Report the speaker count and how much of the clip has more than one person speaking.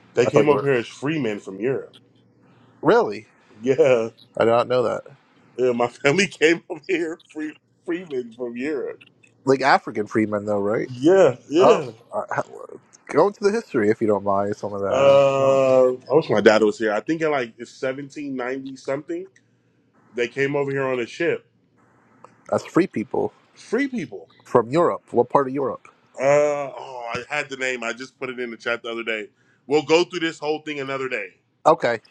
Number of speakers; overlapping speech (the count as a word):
two, about 5%